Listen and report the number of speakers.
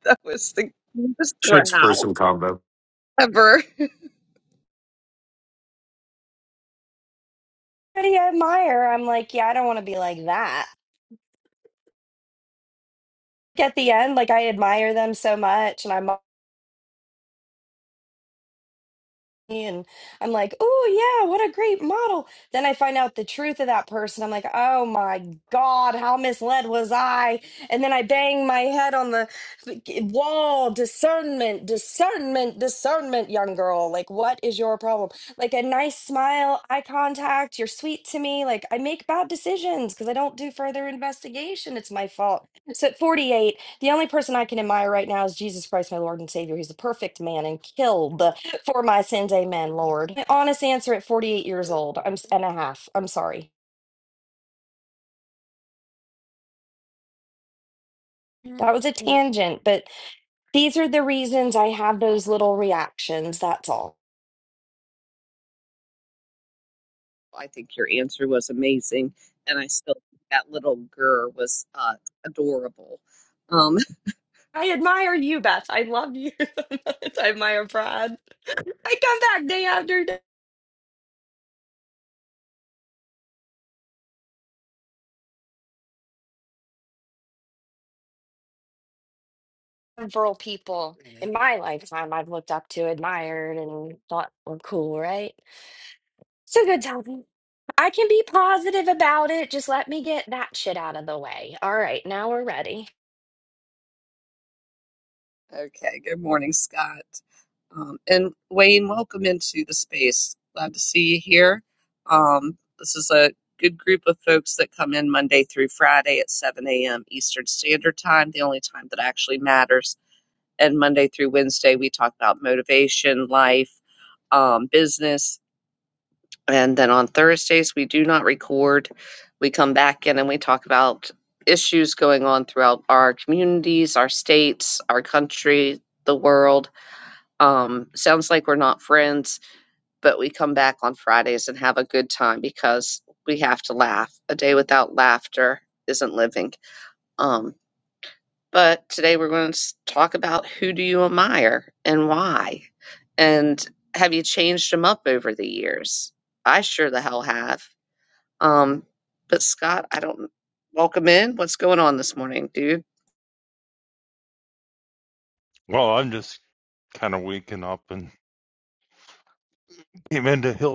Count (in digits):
4